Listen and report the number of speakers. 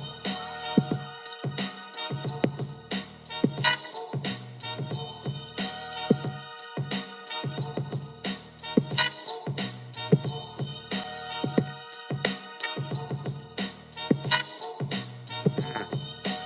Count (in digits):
0